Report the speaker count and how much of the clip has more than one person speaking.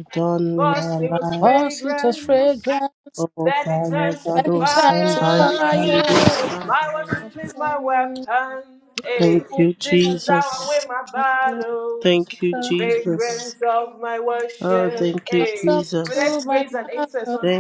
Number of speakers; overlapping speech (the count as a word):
three, about 65%